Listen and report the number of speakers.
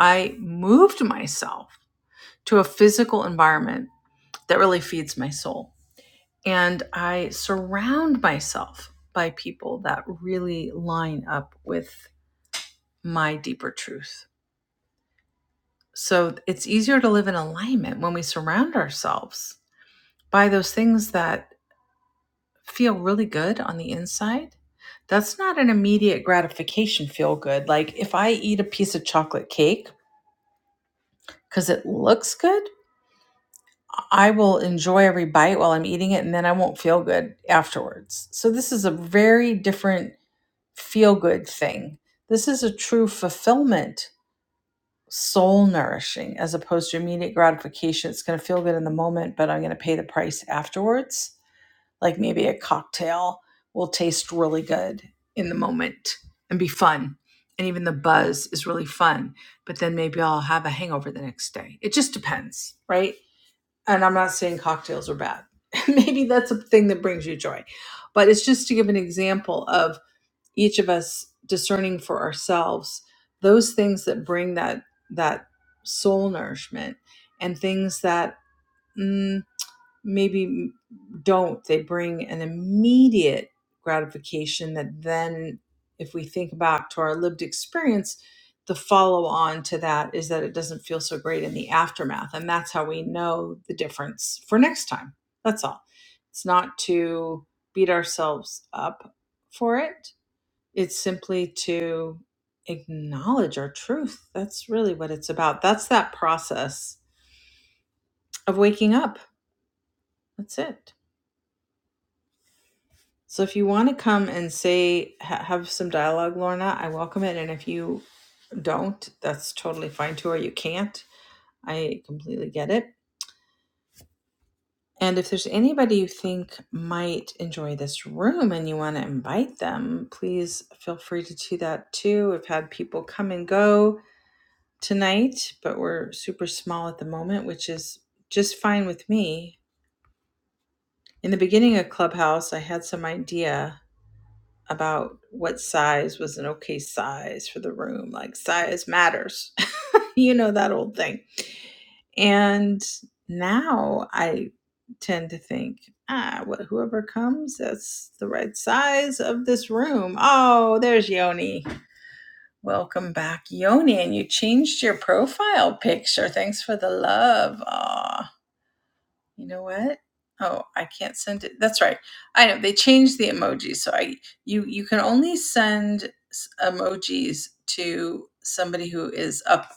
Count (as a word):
one